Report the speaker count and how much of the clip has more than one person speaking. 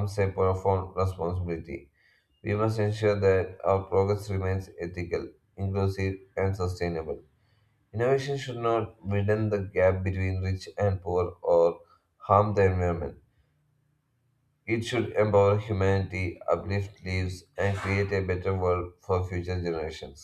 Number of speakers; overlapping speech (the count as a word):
one, no overlap